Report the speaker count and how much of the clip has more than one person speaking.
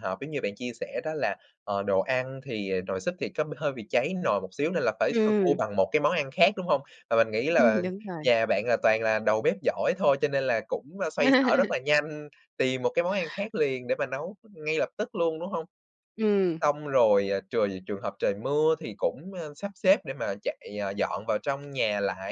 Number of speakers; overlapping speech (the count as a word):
two, about 3%